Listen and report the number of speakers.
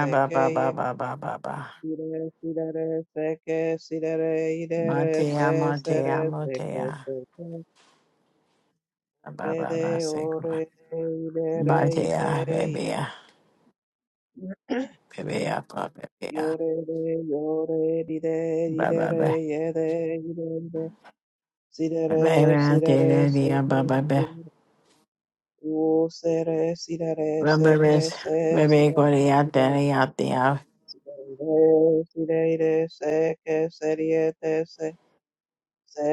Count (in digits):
2